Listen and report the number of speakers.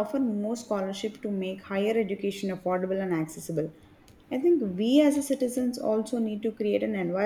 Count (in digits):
1